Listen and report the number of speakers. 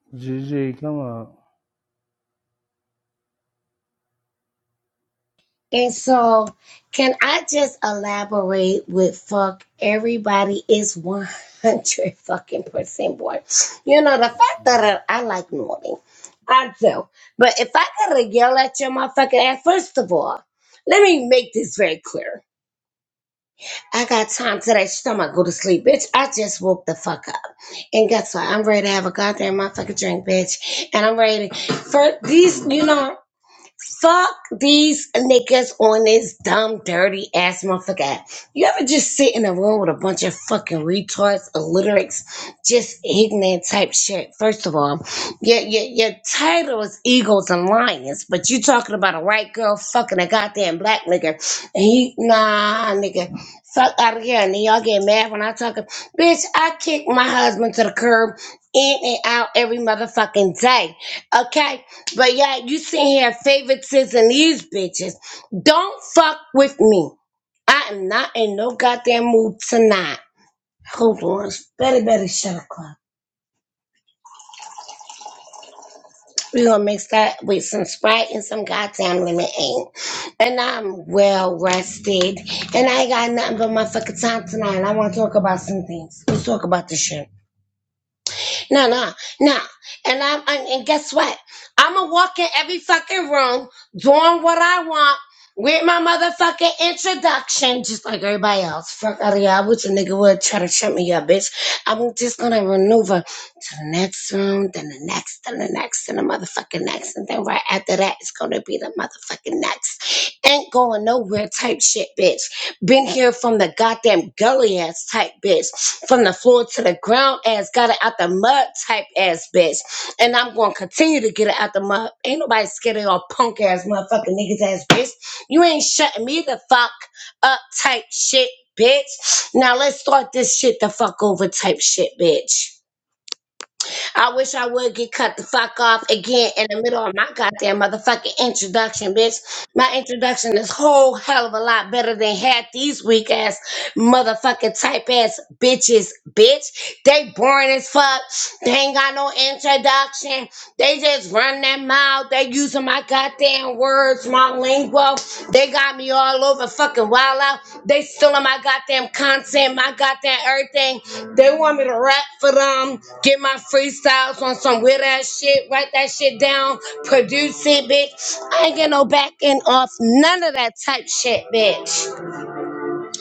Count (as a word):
two